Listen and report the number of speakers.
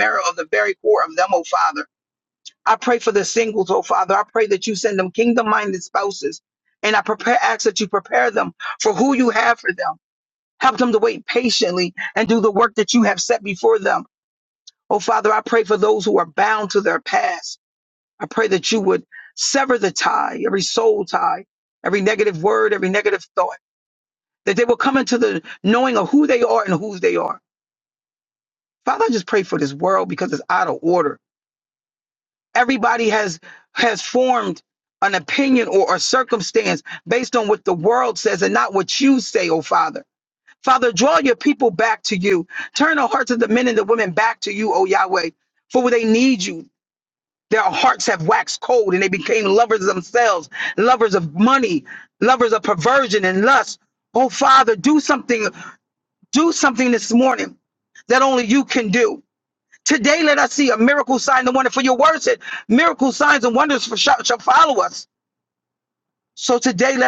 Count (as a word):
one